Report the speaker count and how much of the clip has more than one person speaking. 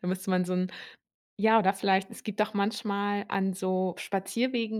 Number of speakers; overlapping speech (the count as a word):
one, no overlap